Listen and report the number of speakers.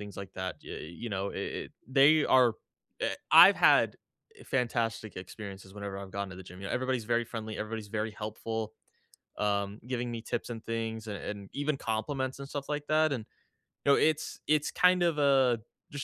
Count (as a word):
one